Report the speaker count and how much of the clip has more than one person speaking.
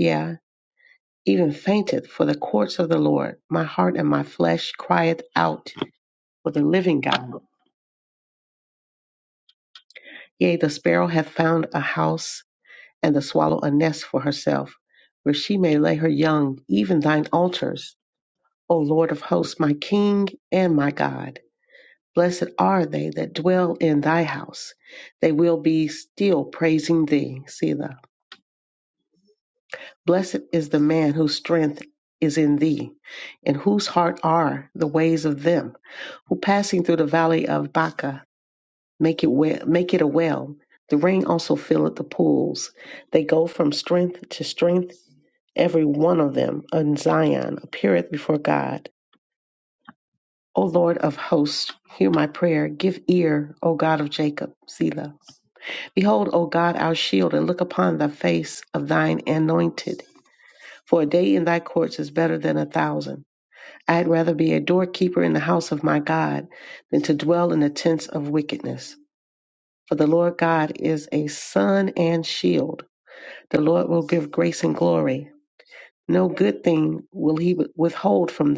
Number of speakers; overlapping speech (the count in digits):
1, no overlap